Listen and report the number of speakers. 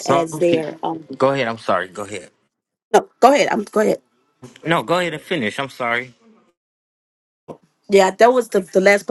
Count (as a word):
two